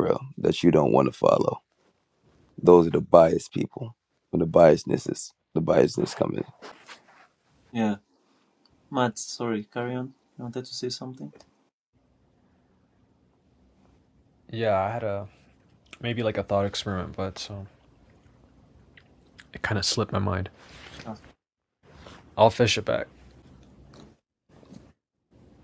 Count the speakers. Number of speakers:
three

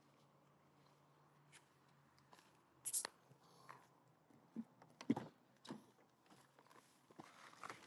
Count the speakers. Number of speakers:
zero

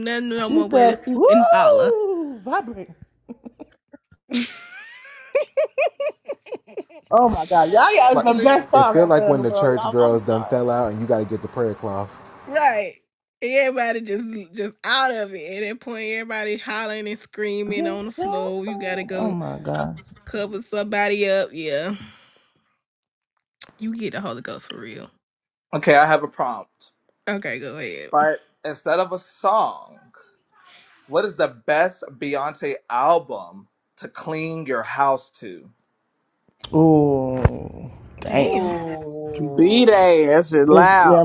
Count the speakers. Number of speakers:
six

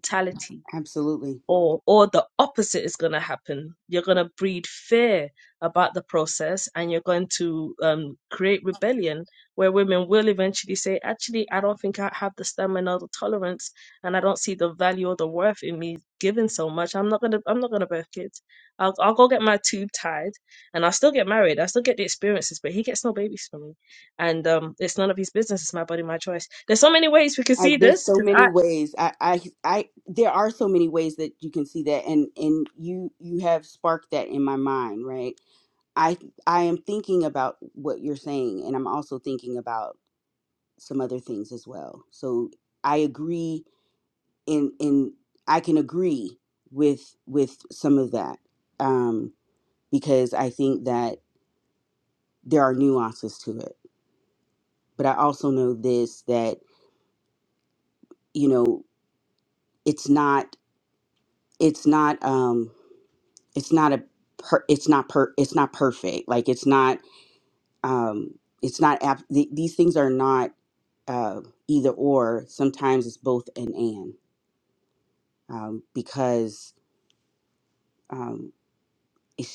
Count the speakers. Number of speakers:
two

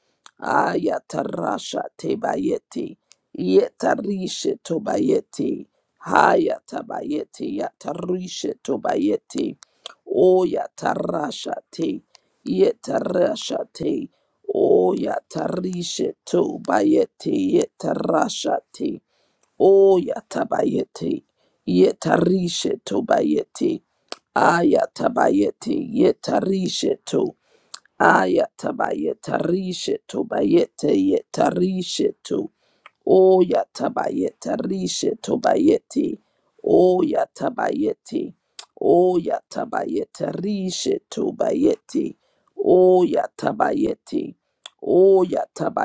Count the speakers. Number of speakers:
one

